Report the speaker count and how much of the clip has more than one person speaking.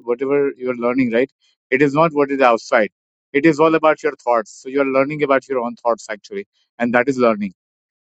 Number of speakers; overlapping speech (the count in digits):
1, no overlap